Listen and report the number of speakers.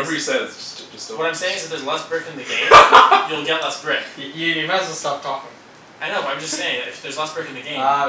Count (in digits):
3